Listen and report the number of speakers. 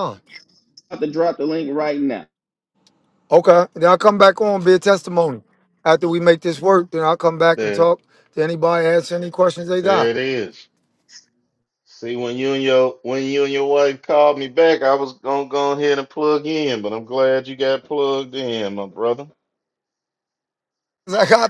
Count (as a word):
three